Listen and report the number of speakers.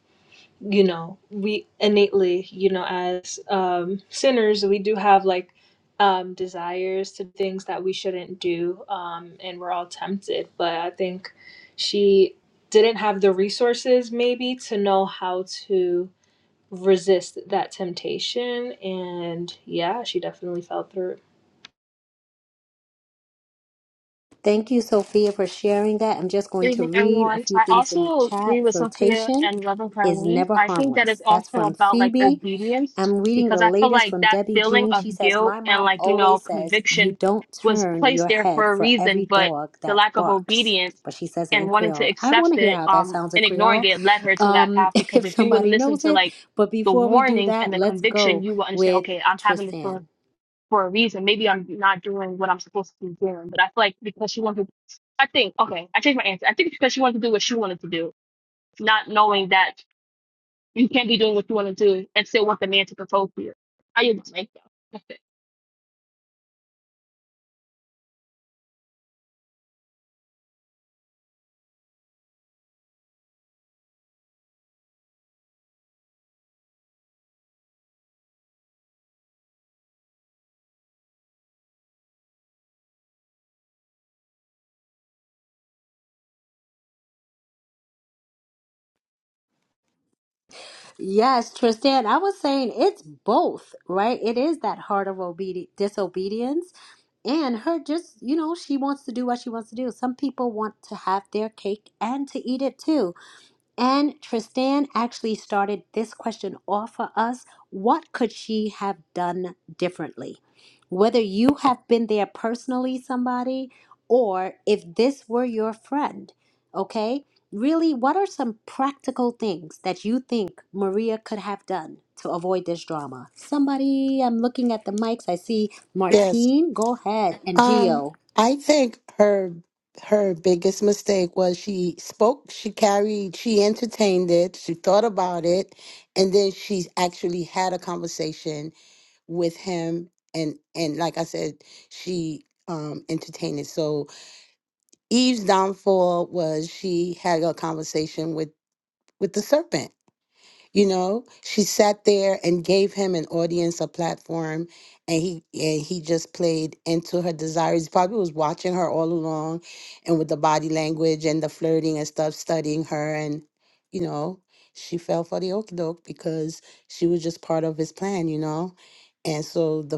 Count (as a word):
four